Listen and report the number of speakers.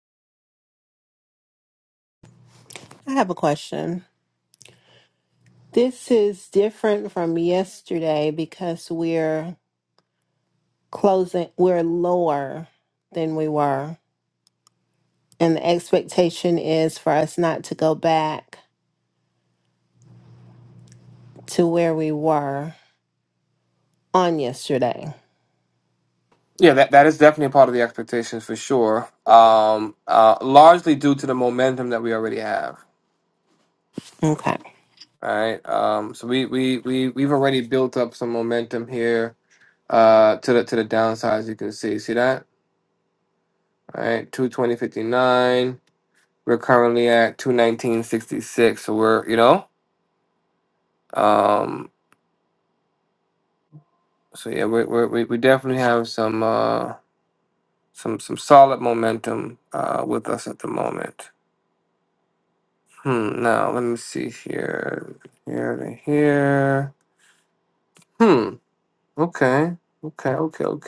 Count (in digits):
2